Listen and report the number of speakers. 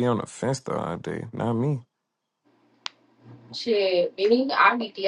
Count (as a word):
two